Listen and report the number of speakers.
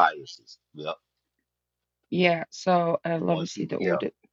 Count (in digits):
2